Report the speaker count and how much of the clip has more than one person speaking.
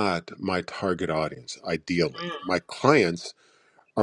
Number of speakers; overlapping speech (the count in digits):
1, no overlap